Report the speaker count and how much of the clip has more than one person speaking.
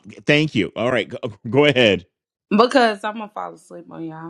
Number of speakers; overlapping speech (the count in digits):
2, no overlap